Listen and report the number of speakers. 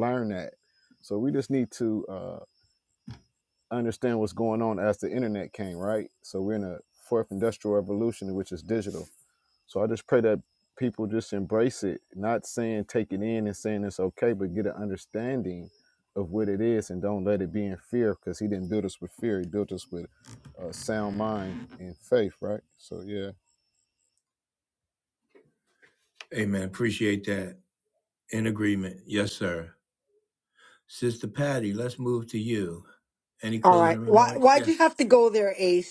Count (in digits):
3